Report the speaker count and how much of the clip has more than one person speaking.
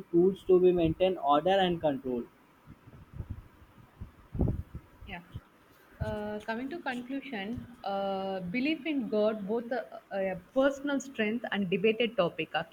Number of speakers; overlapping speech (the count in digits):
2, no overlap